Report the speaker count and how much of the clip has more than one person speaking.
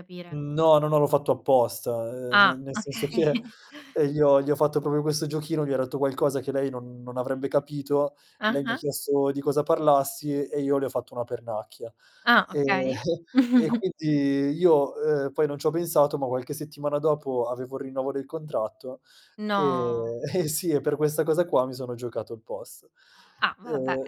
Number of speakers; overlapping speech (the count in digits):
2, about 11%